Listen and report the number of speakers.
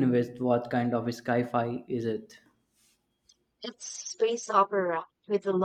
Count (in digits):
2